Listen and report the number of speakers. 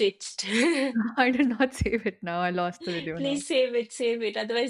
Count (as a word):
two